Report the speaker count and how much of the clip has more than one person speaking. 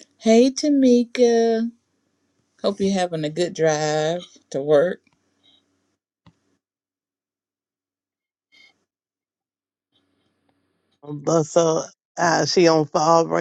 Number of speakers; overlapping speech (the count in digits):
2, no overlap